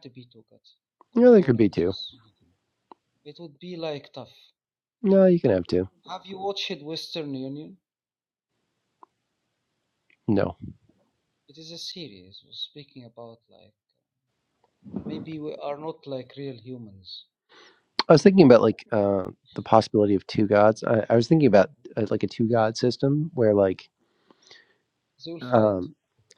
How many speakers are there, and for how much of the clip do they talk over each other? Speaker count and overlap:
two, about 4%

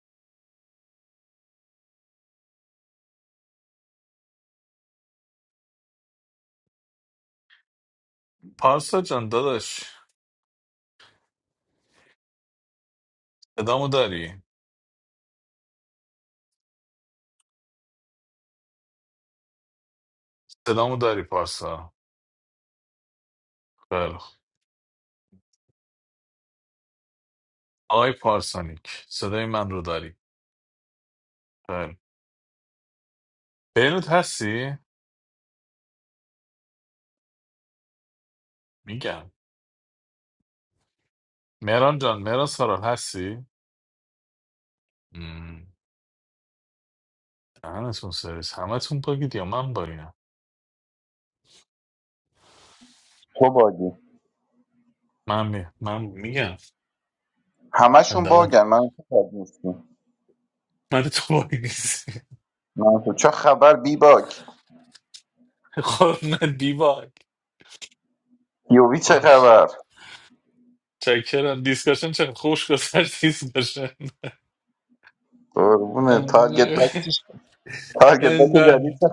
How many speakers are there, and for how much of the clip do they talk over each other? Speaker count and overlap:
two, about 3%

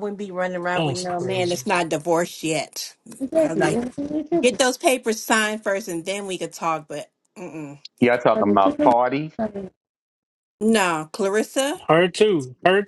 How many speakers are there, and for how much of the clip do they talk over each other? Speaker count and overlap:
four, about 17%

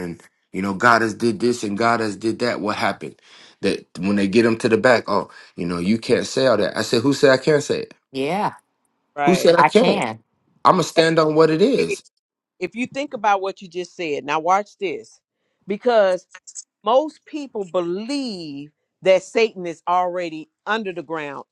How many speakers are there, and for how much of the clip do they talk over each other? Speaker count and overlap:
three, about 4%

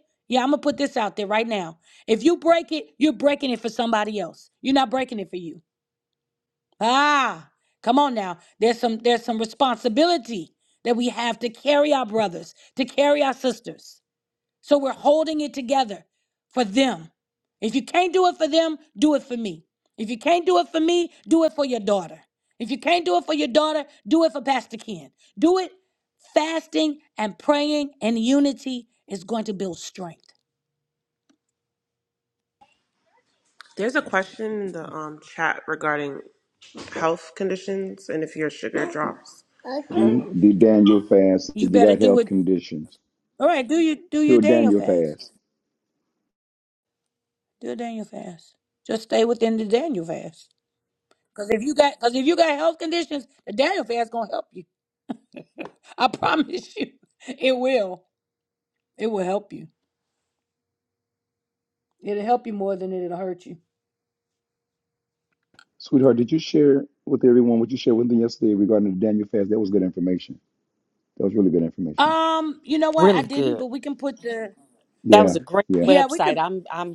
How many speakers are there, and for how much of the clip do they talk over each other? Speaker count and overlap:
four, about 5%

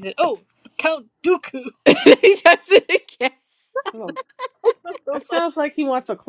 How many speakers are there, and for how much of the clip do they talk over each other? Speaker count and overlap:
three, no overlap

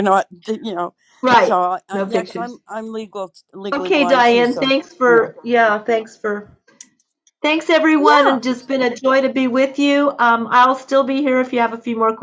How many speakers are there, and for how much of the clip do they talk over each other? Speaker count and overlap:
two, about 19%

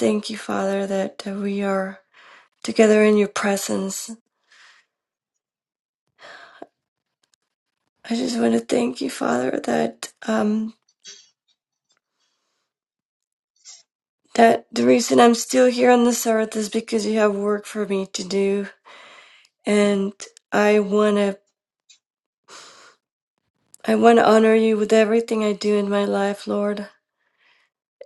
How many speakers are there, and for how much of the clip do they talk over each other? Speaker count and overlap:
one, no overlap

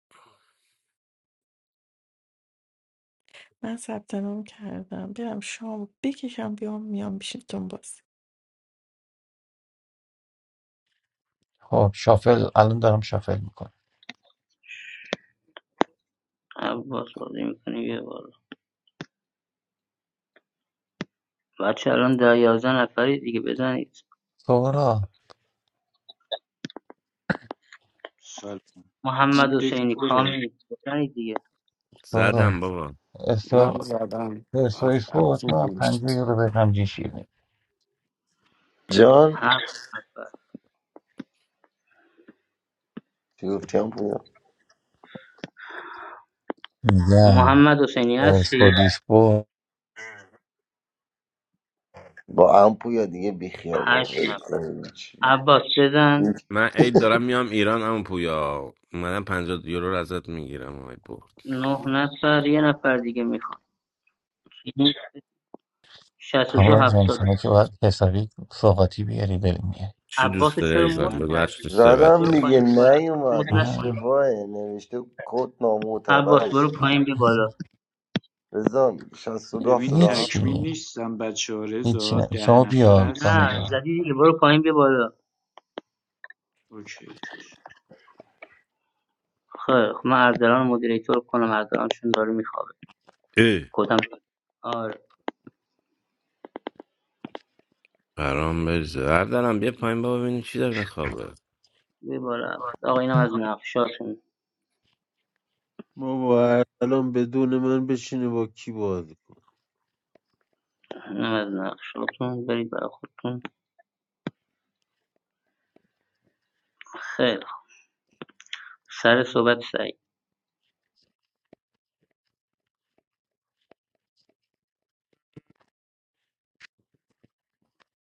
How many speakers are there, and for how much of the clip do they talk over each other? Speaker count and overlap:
eight, about 10%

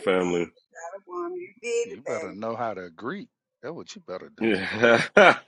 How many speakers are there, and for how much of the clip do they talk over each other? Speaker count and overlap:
three, about 10%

